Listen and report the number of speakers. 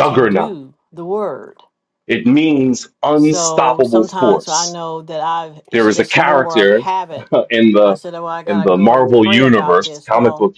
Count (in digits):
2